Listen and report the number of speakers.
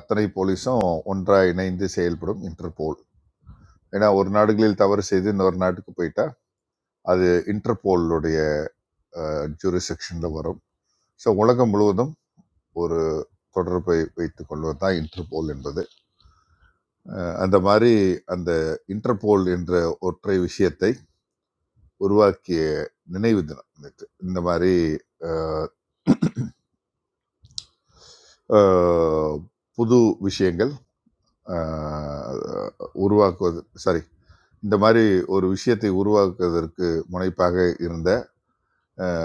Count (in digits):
1